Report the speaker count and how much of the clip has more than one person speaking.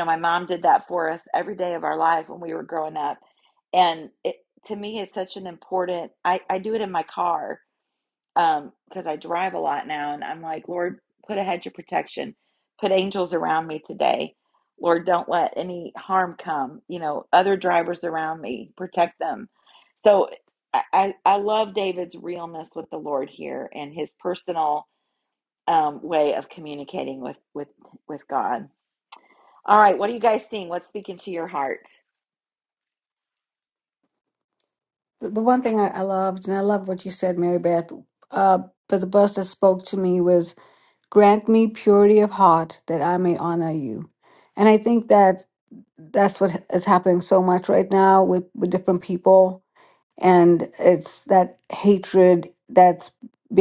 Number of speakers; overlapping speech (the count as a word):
two, no overlap